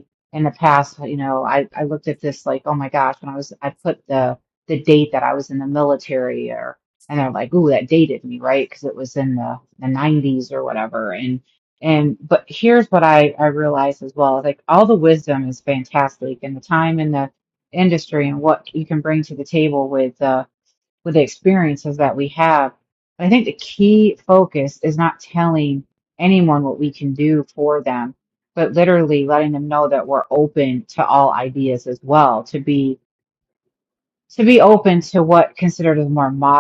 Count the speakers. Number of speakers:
1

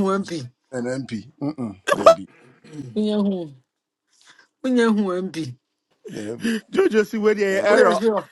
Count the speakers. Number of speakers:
3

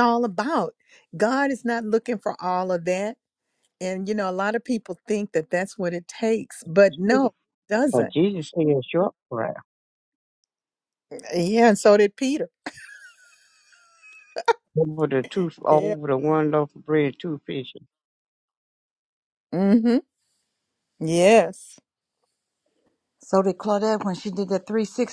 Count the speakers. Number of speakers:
3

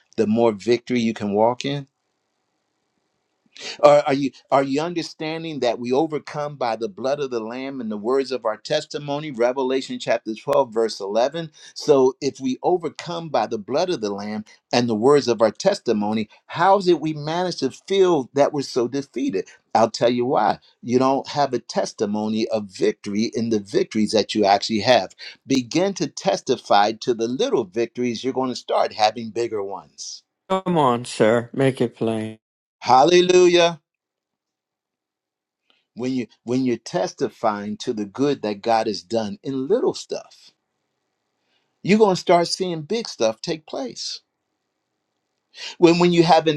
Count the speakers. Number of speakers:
2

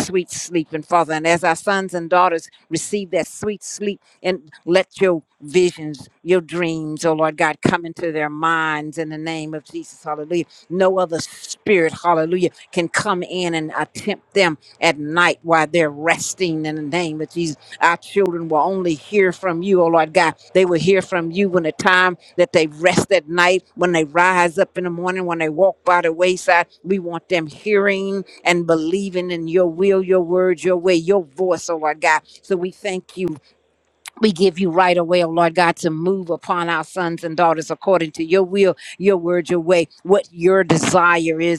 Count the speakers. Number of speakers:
1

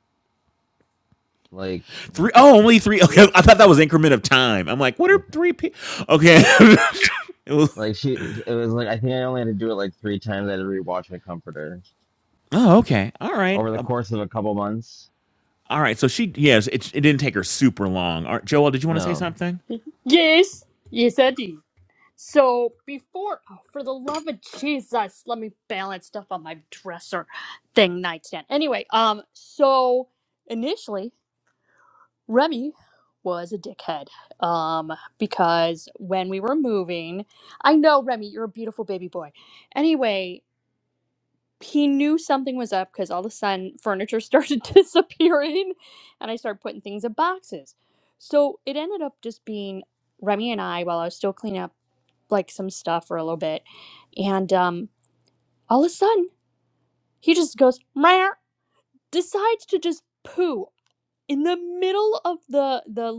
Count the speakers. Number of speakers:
3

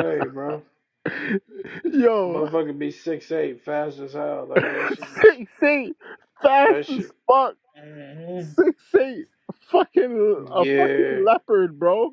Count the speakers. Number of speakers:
2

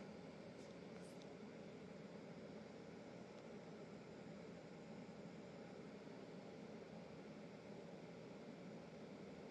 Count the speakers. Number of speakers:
0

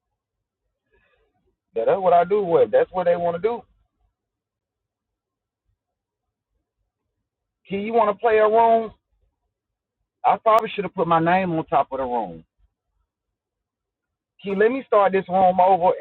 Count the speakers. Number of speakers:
1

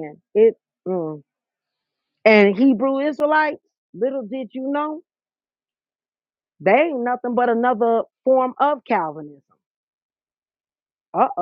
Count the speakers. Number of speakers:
1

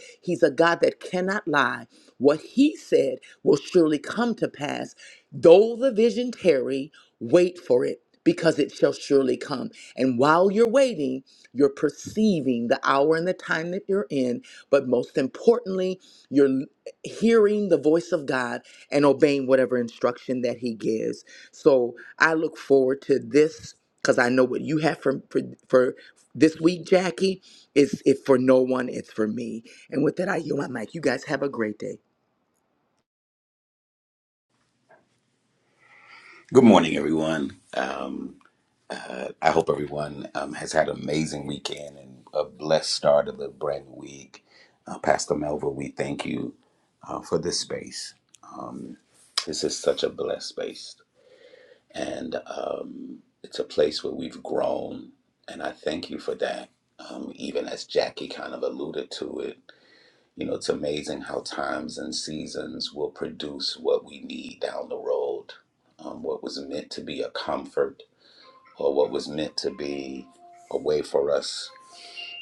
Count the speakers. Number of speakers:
2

